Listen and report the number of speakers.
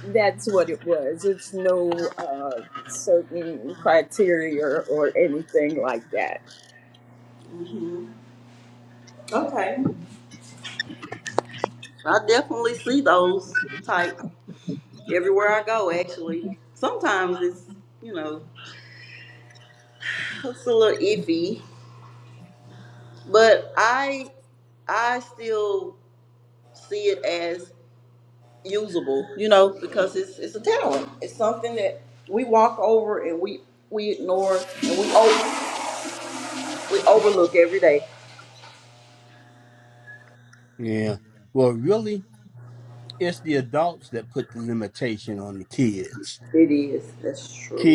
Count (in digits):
3